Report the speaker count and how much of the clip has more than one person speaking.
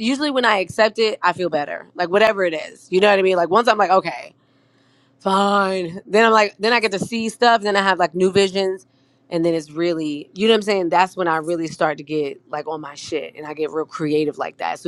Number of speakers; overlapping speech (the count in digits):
1, no overlap